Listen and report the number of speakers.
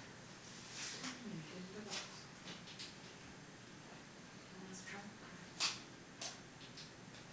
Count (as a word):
zero